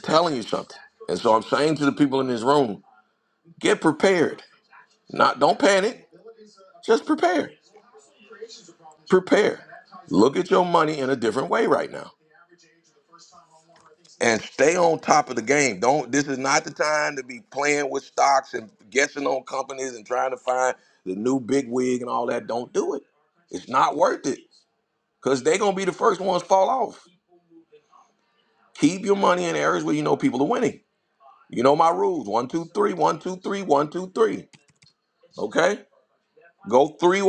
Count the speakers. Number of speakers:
1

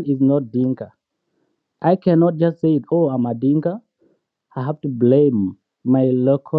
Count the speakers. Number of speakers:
1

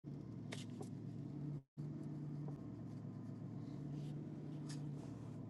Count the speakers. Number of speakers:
0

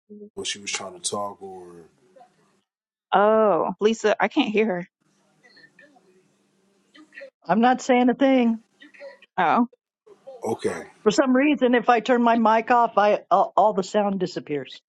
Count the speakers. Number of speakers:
3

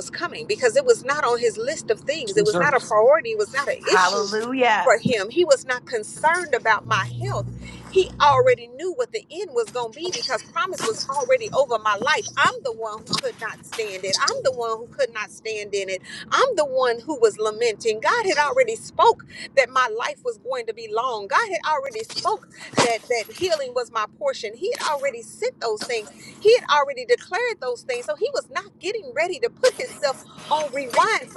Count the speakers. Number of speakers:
2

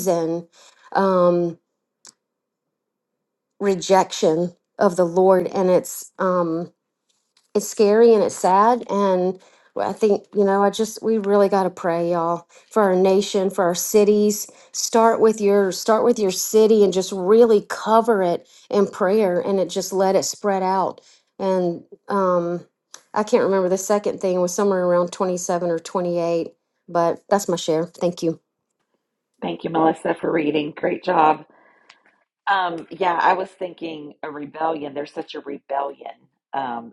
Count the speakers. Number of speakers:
2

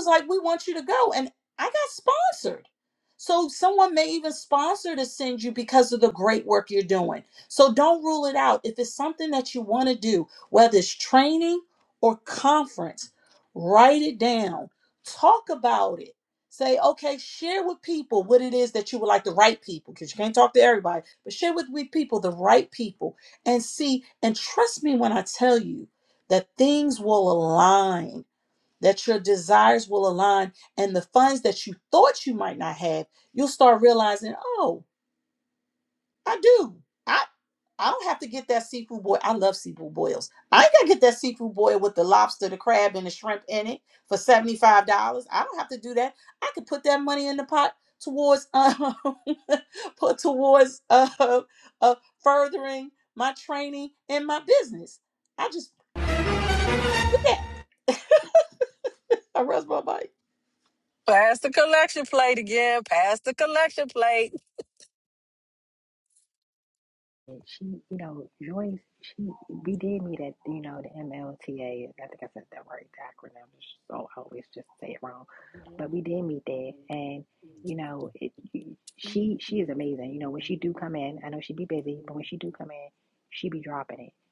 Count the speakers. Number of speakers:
3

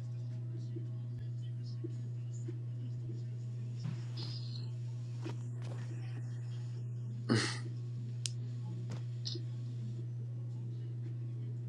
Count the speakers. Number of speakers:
0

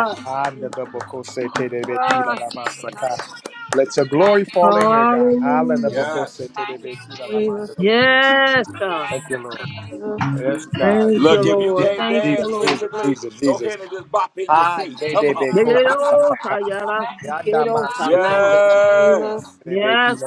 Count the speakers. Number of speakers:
4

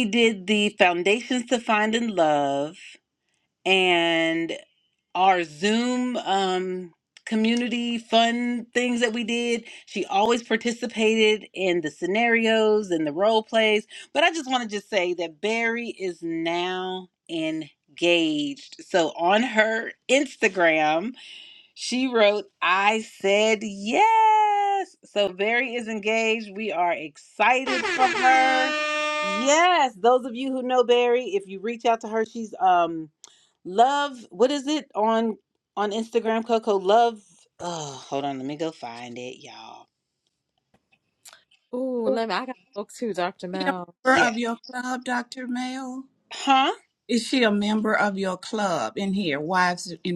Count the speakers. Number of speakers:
3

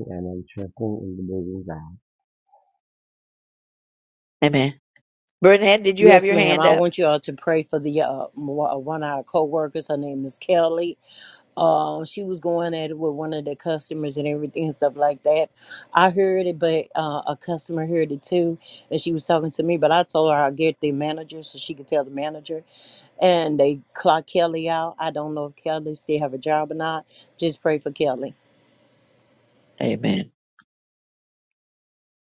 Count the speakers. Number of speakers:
3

